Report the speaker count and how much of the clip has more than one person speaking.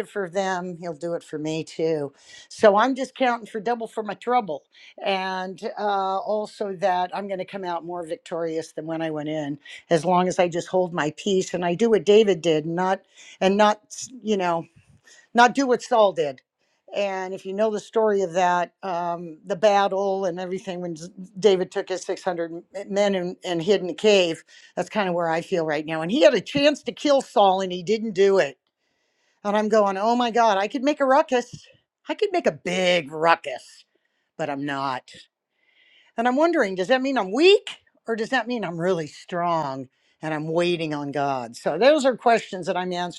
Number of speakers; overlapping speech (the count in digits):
1, no overlap